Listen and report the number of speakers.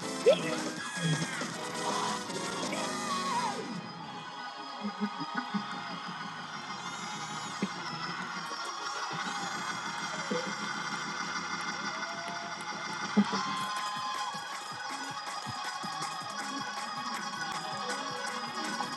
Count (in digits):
0